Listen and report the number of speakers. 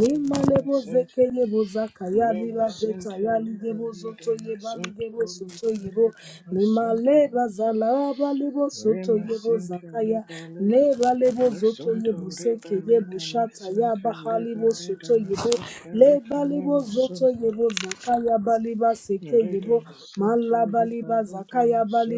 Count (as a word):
two